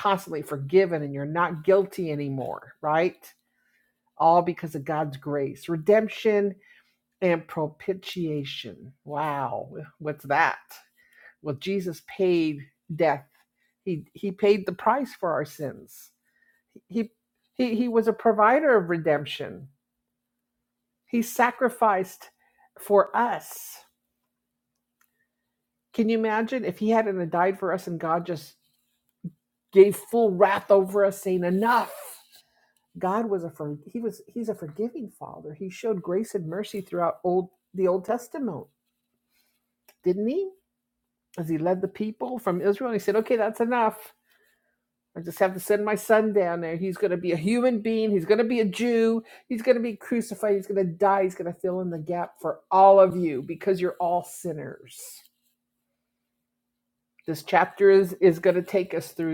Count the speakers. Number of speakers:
1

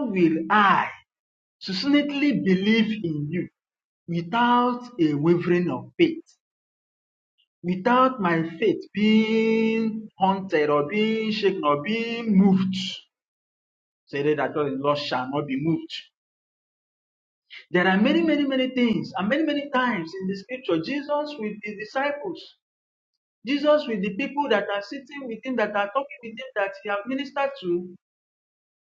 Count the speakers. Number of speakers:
1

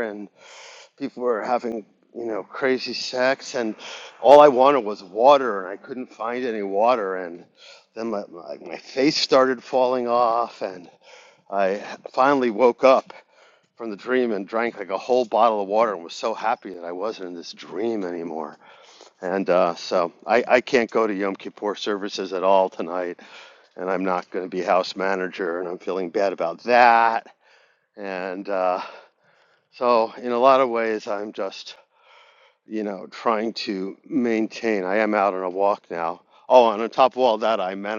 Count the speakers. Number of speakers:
1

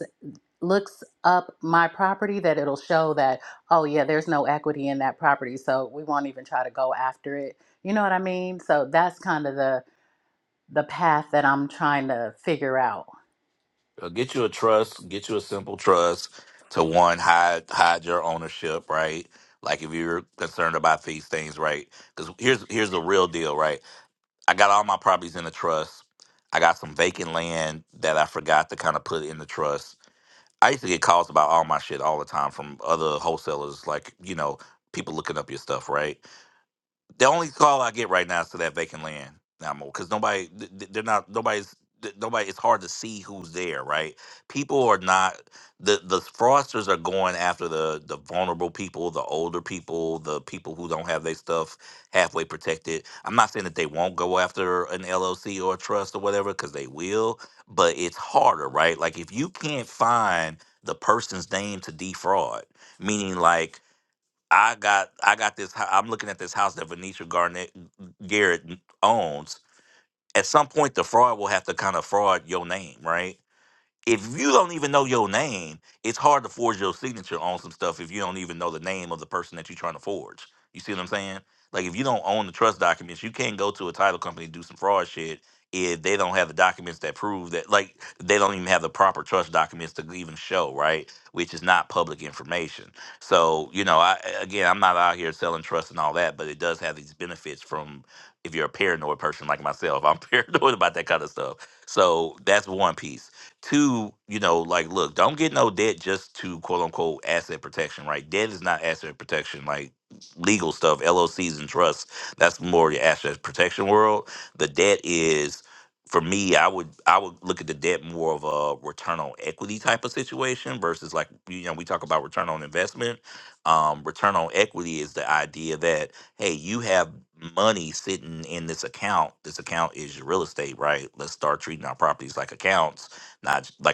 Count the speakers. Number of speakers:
2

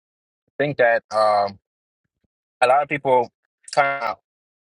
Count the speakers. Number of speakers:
1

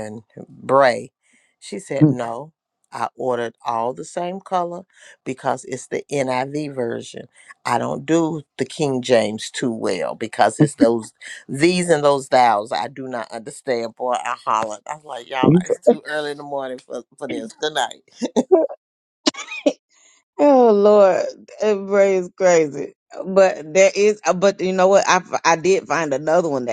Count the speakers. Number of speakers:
2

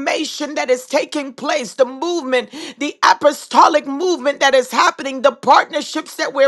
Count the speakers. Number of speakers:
1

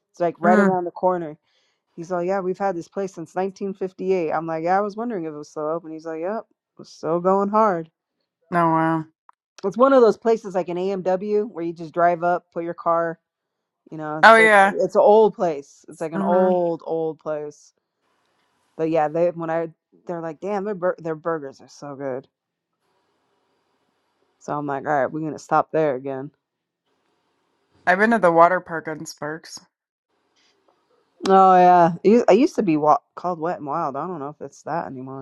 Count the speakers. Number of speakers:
2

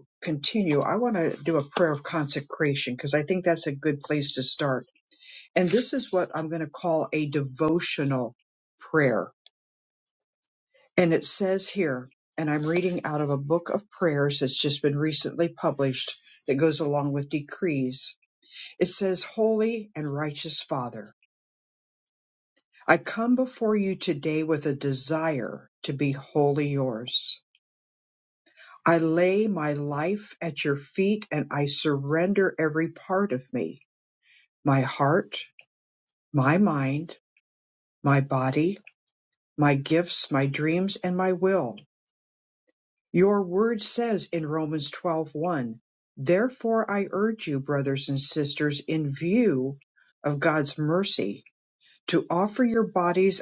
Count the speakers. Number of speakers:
1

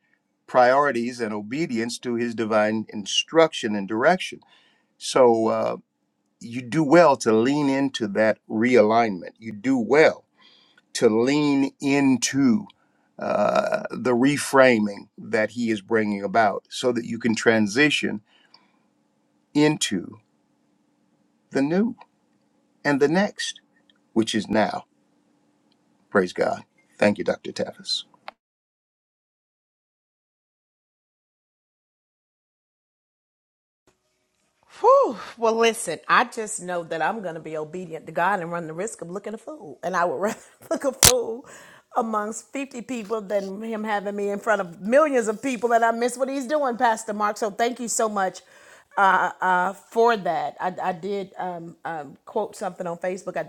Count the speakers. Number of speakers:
2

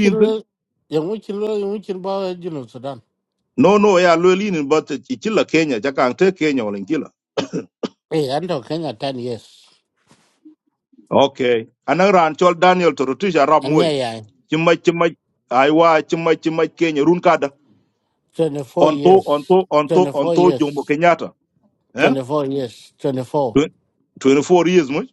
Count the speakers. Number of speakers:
2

